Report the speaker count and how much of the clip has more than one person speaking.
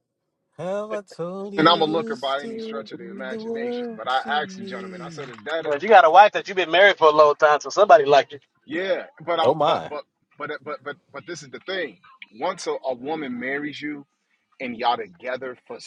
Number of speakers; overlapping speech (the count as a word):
three, about 26%